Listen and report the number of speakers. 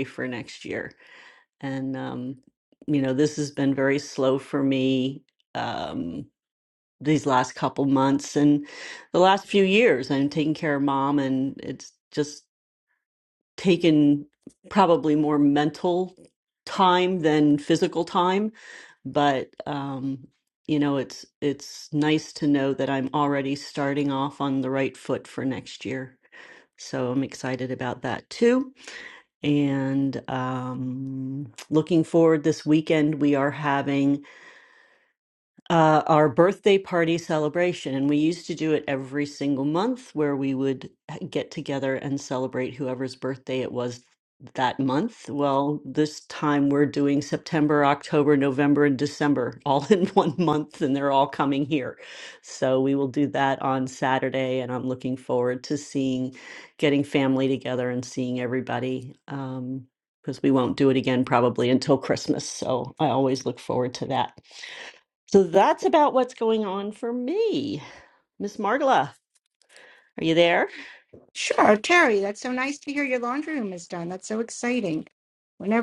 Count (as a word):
two